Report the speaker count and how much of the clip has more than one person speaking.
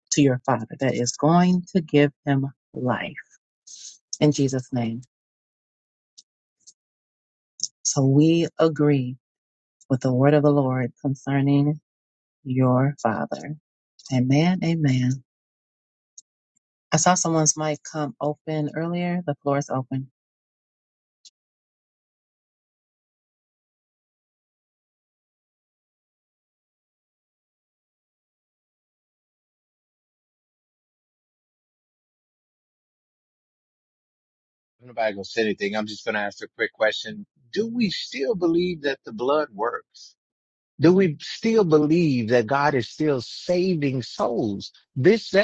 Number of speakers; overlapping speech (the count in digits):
2, no overlap